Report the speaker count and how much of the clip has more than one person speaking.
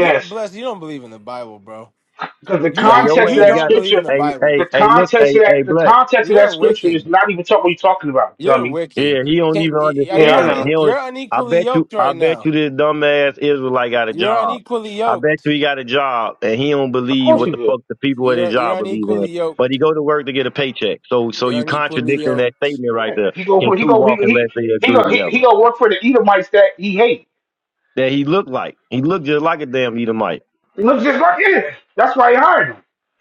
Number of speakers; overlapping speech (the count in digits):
3, about 38%